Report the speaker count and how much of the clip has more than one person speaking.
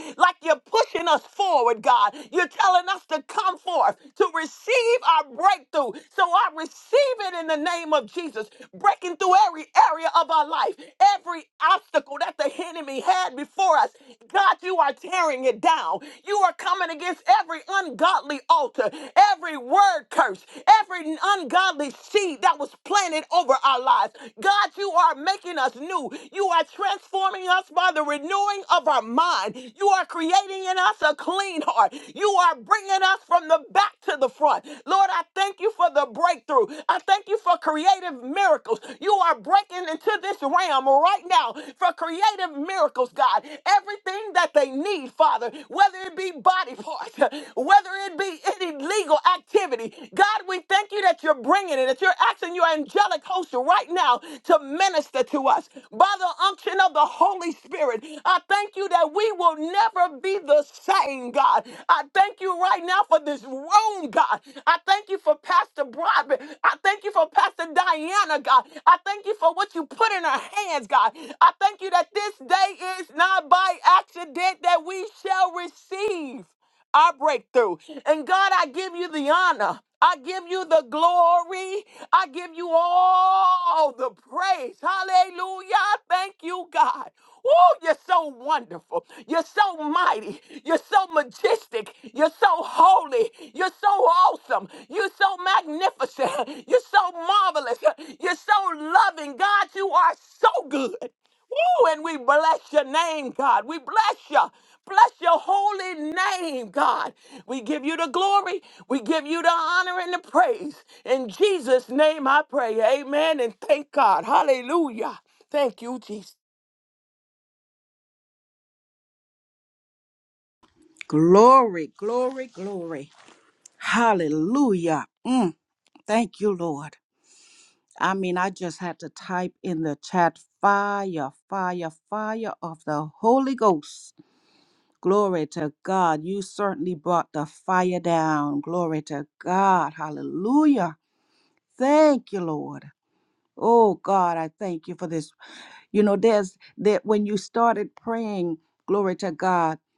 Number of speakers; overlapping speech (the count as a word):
two, no overlap